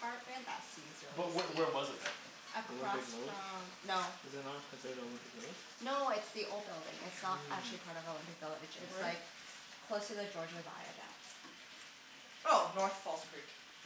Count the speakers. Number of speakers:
4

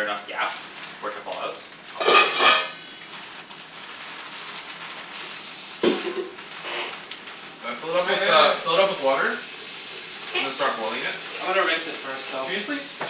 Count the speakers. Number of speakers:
4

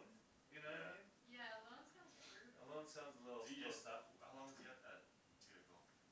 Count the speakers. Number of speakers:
3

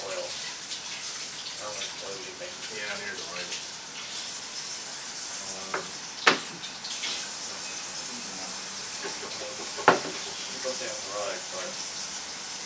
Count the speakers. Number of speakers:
2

